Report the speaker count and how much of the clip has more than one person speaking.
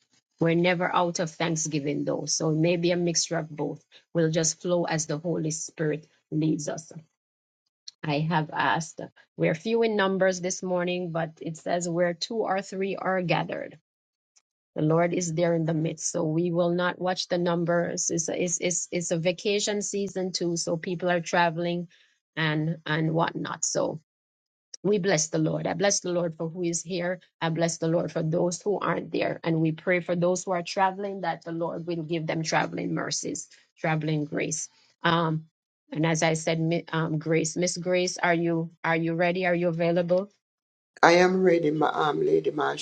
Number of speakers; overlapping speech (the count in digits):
2, no overlap